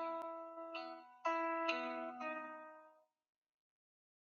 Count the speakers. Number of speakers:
zero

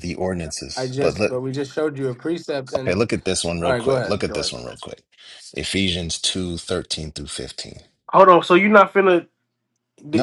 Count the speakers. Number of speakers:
three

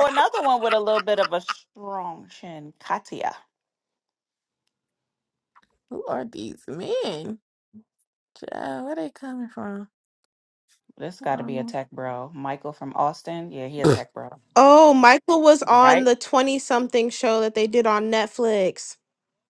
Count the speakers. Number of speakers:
three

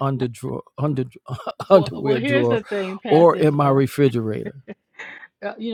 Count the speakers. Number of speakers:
two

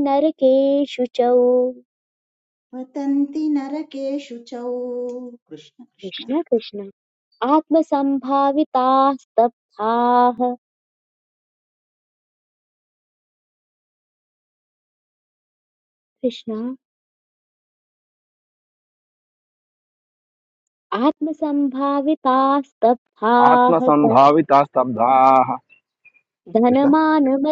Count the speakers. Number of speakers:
three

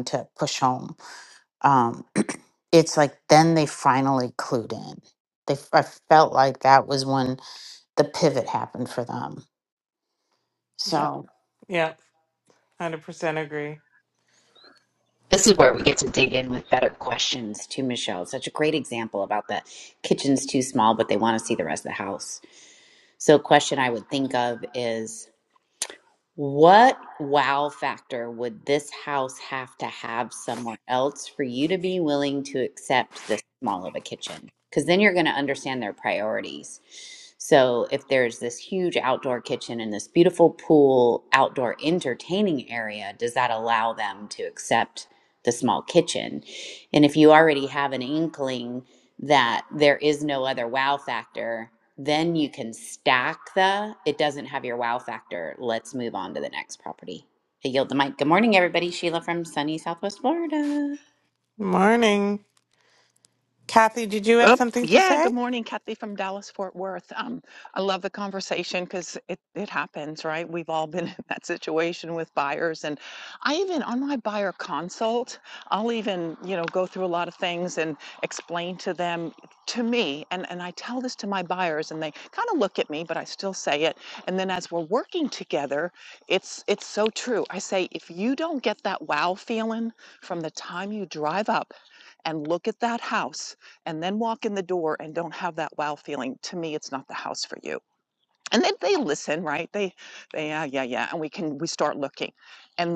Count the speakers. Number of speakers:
four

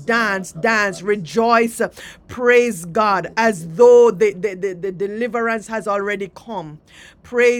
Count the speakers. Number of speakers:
one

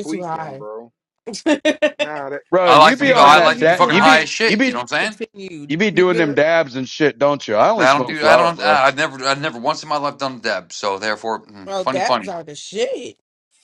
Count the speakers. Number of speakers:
four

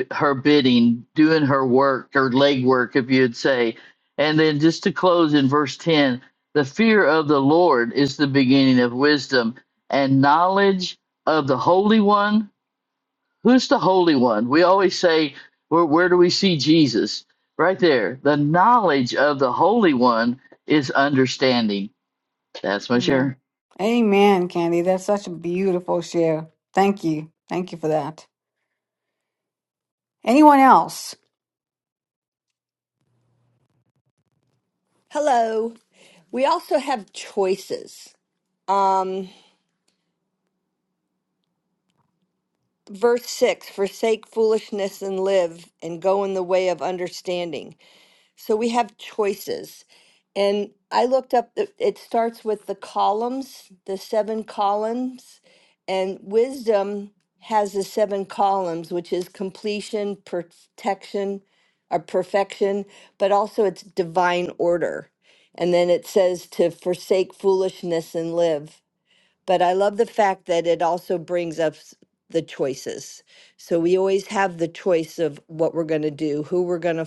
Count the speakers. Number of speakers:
three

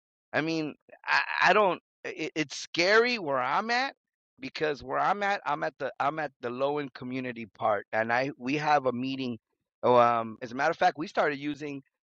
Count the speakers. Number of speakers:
one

